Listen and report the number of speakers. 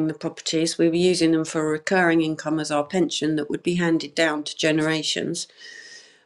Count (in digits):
1